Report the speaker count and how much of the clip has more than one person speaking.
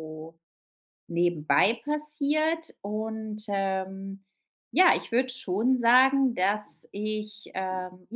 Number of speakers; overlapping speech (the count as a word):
one, no overlap